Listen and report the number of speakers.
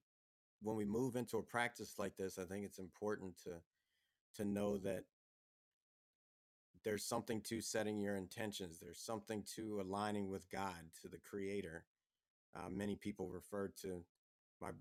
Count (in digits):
1